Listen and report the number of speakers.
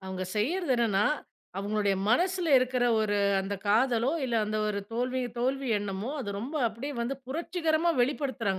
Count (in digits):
1